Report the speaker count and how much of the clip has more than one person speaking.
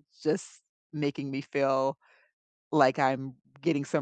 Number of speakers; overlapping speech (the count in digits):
1, no overlap